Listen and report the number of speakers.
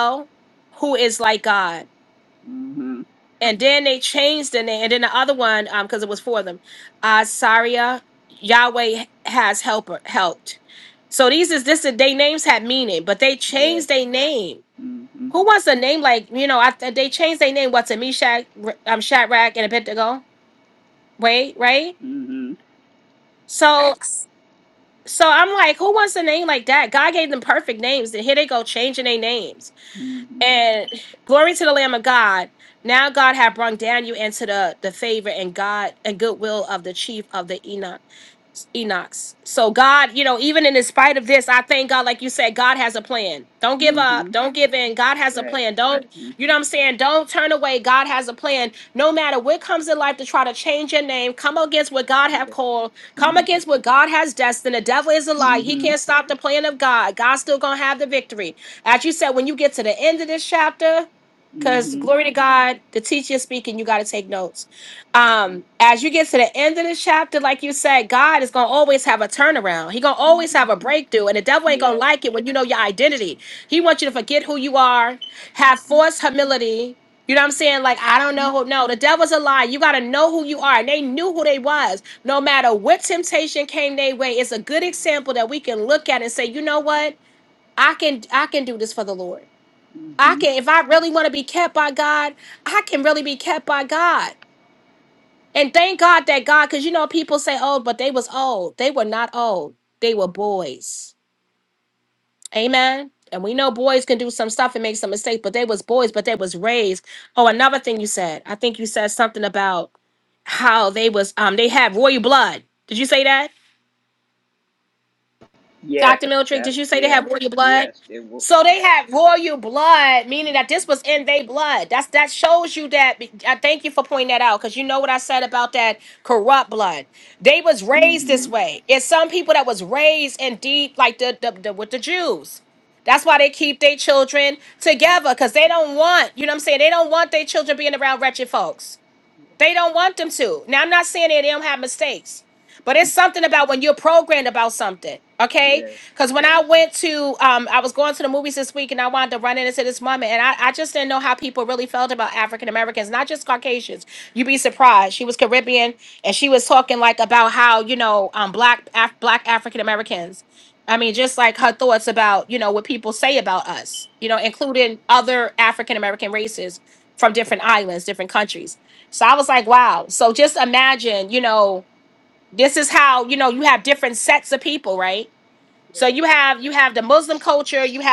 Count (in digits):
2